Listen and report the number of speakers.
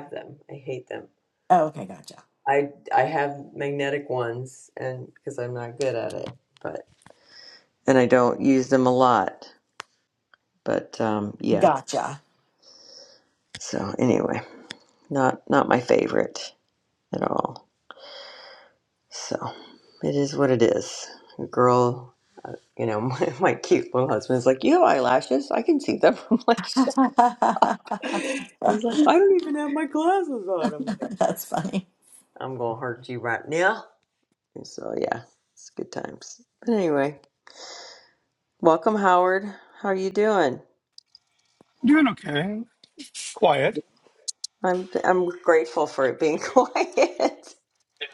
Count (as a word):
three